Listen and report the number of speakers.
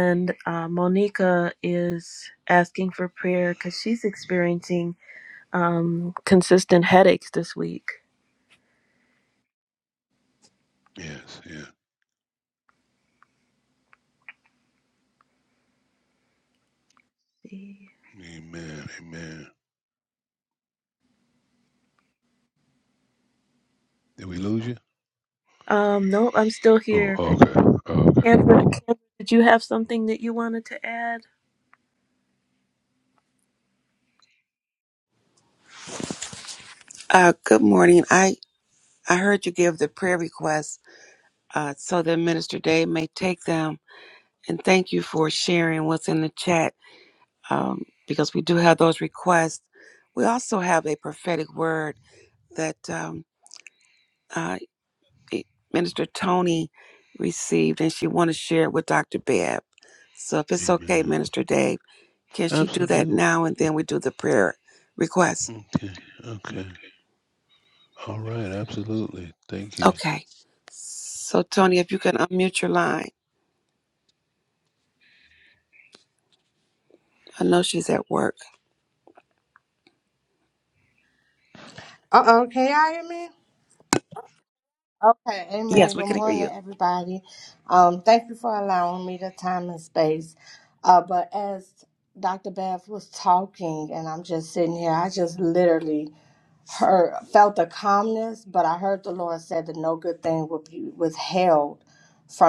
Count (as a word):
four